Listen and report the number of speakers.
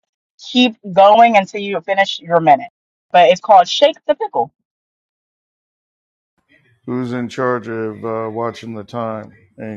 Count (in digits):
2